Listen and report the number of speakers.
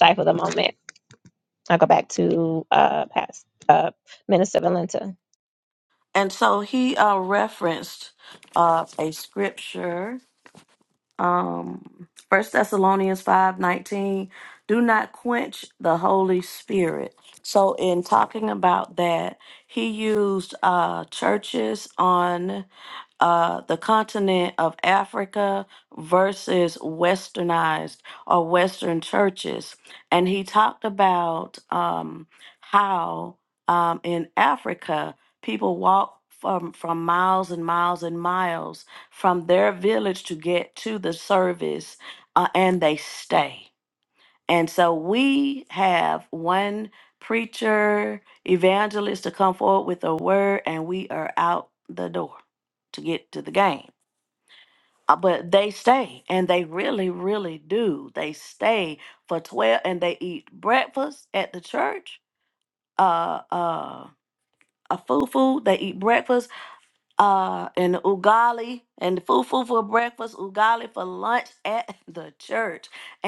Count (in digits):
2